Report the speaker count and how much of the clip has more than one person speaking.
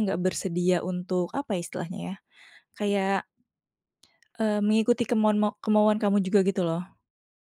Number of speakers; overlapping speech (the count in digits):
1, no overlap